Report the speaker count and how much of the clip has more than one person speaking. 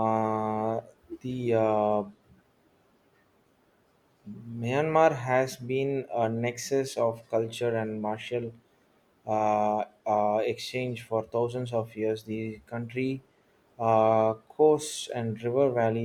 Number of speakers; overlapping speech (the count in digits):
1, no overlap